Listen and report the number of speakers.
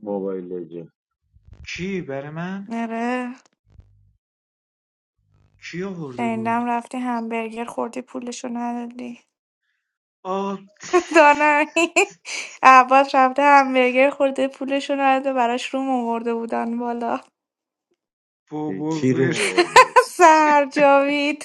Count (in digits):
3